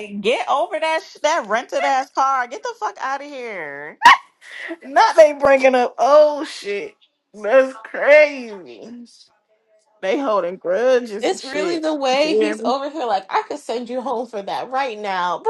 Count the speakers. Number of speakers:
three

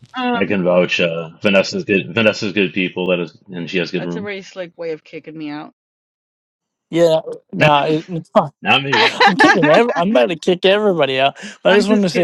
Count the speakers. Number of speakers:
three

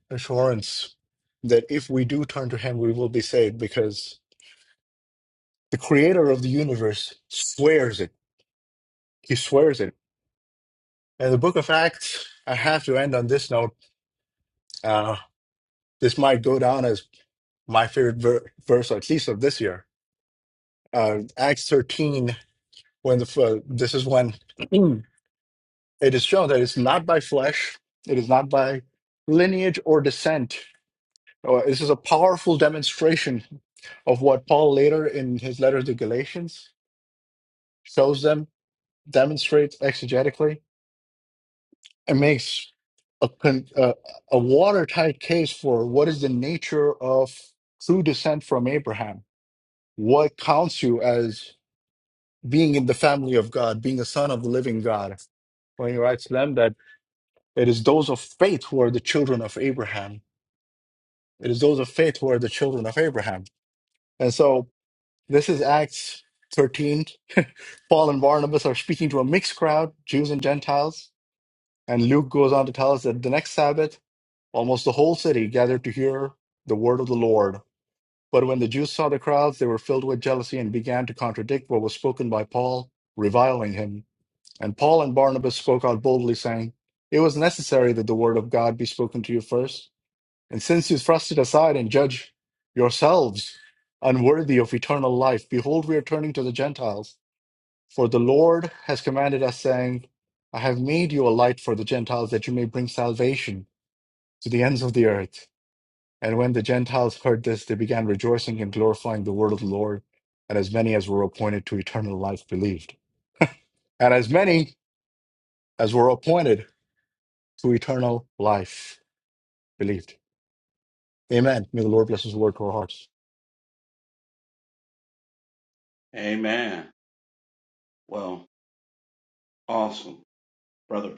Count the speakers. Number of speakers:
two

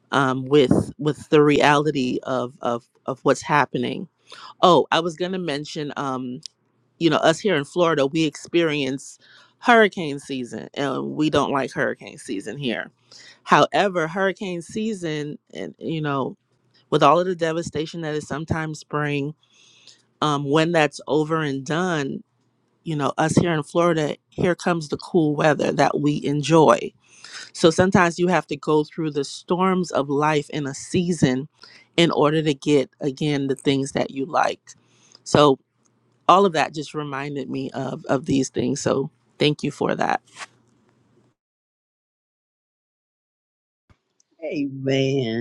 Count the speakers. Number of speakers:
two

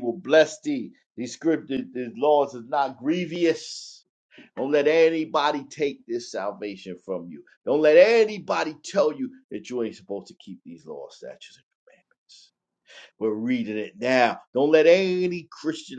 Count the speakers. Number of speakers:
one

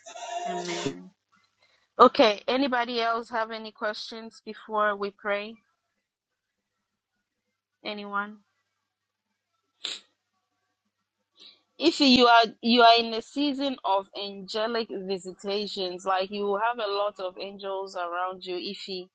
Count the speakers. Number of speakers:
one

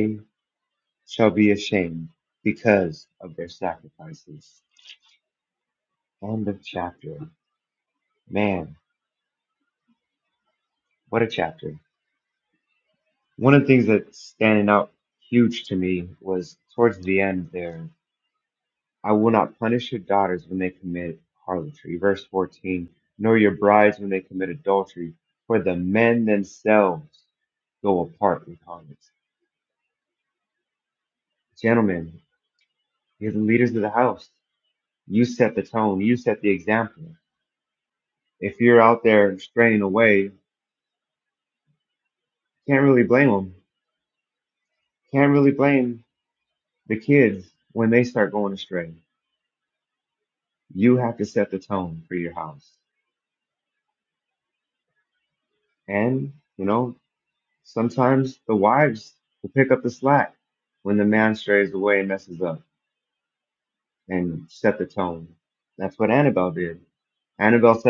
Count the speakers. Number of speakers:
one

